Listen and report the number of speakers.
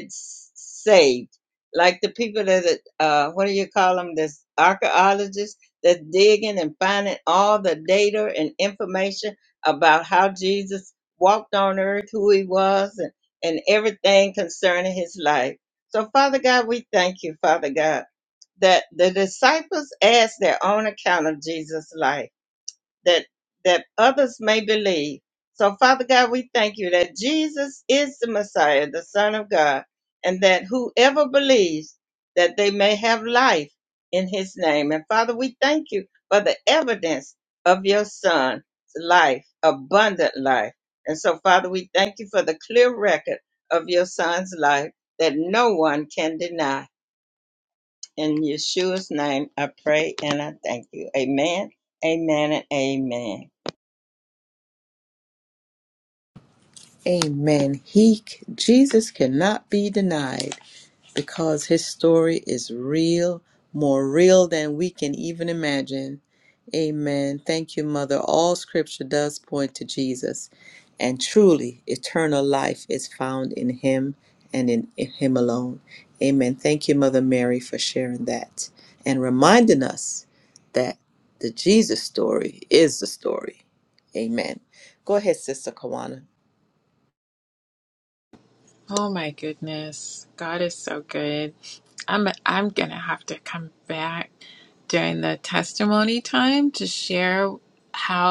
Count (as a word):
three